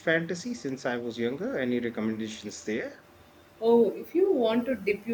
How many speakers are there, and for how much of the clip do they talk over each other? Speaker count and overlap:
2, no overlap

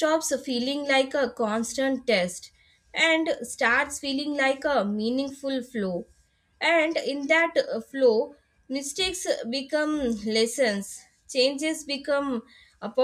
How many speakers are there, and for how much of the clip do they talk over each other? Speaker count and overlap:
1, no overlap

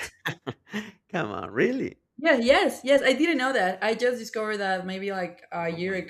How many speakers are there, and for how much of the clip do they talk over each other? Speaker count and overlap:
2, about 7%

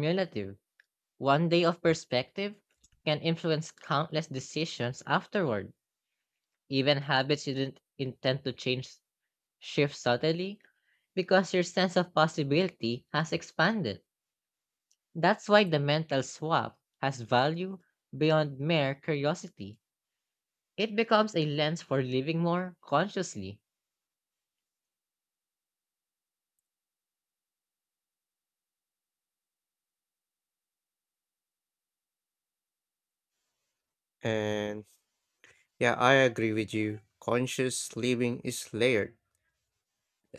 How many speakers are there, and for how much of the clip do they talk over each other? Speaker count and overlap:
2, no overlap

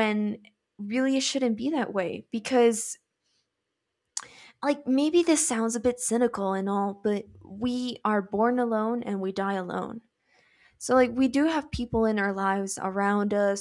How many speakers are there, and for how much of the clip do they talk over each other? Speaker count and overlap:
1, no overlap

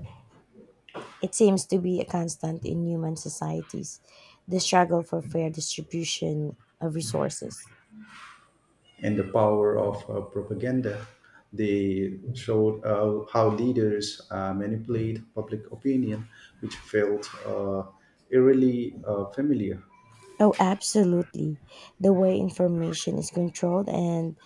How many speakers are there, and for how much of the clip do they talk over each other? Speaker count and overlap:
2, no overlap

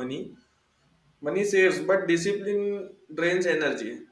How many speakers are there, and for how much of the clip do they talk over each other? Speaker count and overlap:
1, no overlap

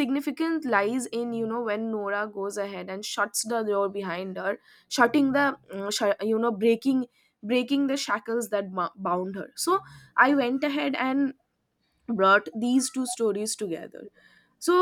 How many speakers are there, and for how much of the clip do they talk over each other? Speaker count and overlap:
1, no overlap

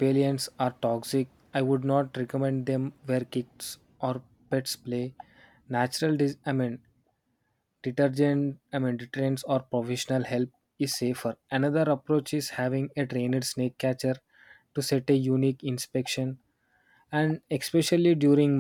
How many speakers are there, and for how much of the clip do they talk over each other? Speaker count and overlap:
1, no overlap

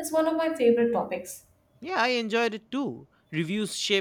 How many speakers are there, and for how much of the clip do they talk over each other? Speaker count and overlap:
2, no overlap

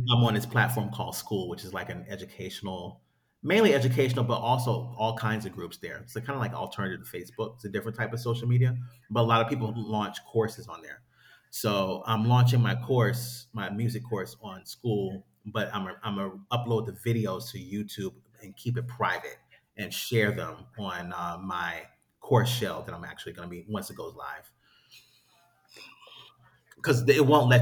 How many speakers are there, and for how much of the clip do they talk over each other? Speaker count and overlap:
1, no overlap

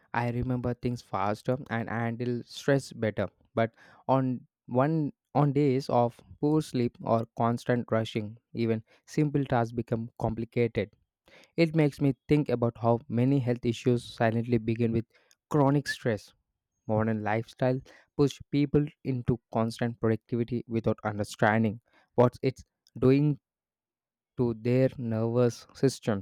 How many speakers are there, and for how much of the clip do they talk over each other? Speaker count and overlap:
1, no overlap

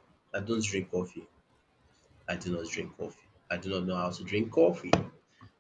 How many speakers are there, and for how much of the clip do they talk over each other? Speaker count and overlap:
1, no overlap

